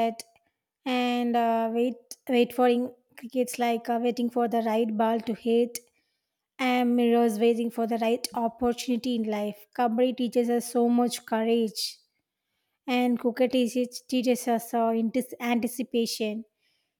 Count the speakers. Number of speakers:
one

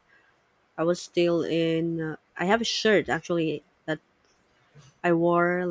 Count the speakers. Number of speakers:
one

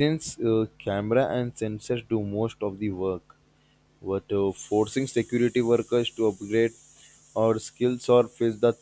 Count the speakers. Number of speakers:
one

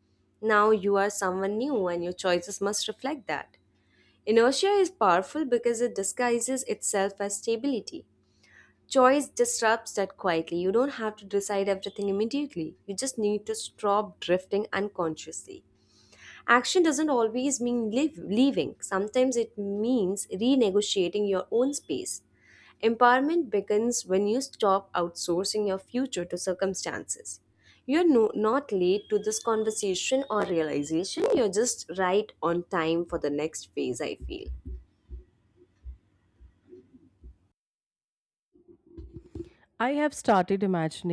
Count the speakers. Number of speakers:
two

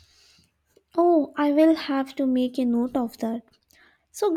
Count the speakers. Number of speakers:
one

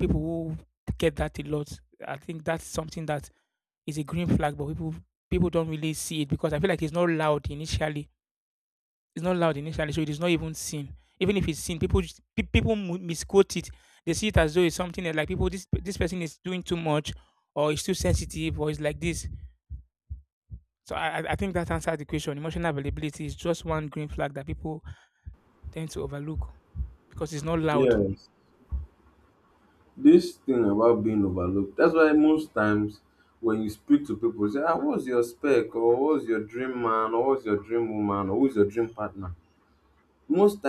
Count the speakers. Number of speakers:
two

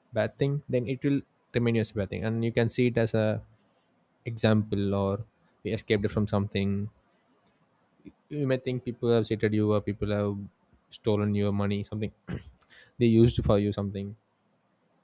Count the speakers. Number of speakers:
one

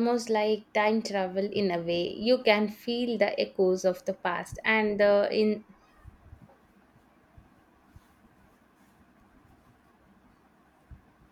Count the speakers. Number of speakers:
one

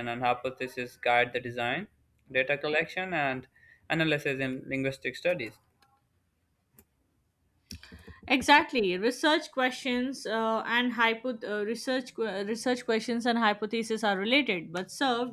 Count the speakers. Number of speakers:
two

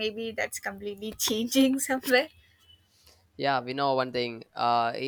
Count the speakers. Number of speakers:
two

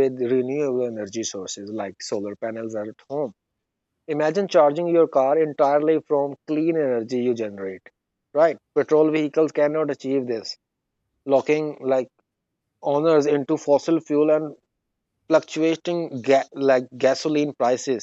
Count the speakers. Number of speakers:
one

